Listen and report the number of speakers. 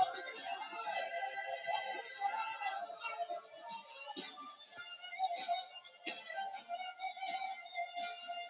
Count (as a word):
zero